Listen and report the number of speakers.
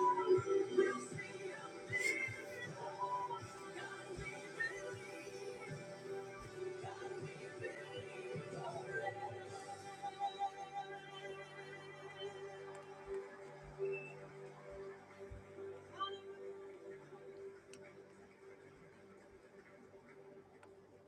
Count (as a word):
zero